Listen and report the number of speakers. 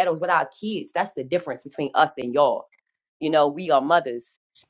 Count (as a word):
one